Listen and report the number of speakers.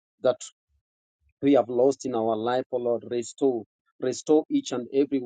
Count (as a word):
one